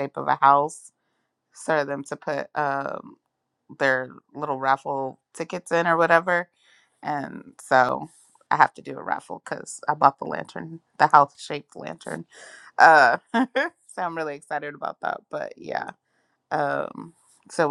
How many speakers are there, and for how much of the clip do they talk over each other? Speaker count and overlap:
one, no overlap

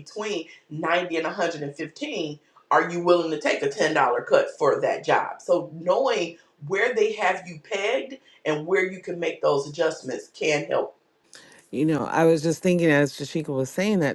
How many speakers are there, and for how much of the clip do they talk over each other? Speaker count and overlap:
two, no overlap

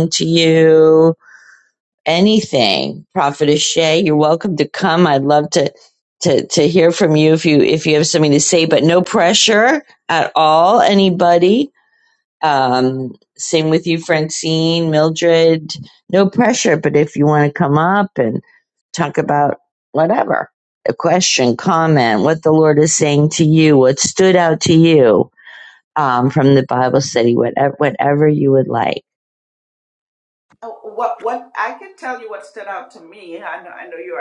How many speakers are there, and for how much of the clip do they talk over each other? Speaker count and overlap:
two, no overlap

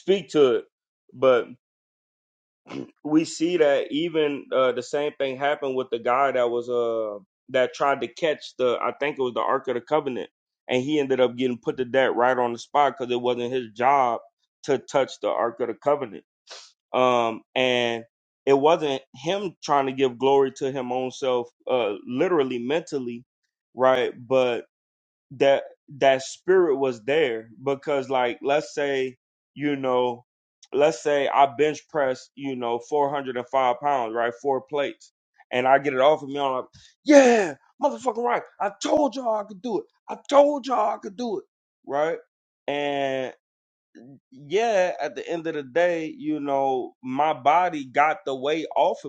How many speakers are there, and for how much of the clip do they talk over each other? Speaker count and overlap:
one, no overlap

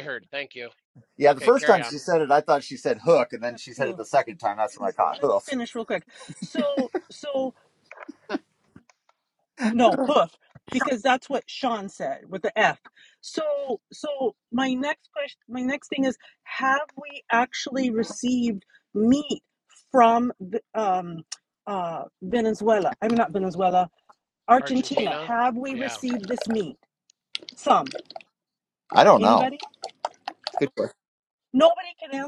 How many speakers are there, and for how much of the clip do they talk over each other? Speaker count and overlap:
three, about 8%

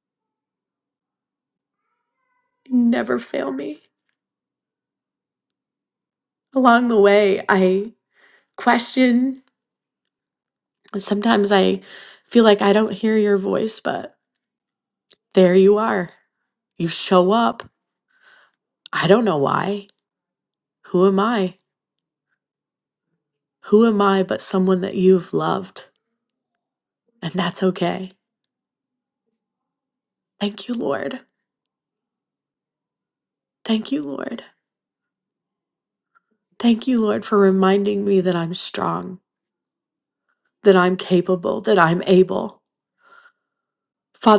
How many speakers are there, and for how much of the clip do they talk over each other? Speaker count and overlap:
one, no overlap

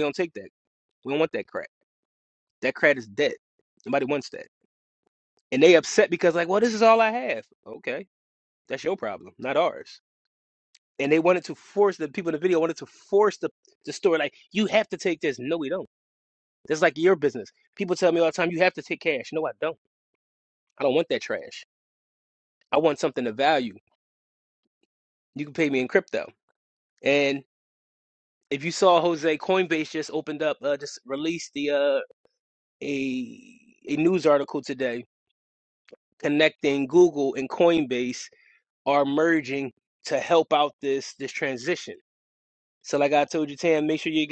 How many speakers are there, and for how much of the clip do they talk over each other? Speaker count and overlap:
one, no overlap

